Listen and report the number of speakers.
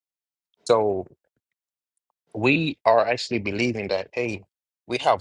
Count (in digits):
1